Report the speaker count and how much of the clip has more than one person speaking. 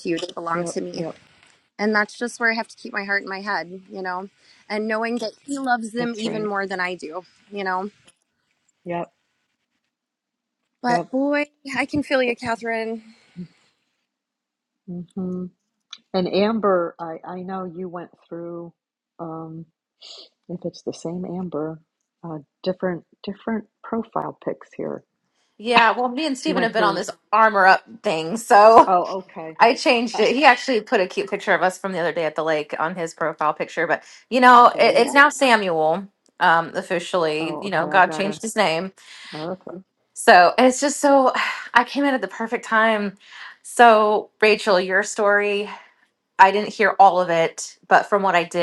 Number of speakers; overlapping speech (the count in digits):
3, about 7%